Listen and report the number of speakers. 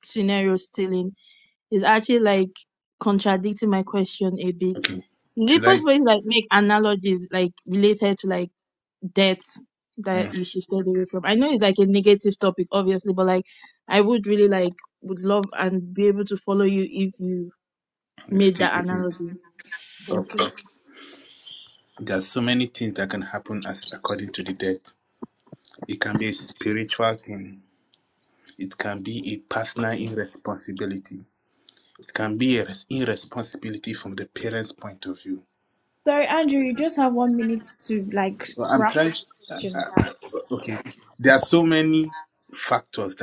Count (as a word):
three